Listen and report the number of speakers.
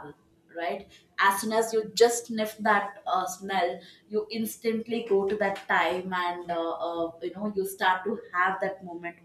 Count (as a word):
one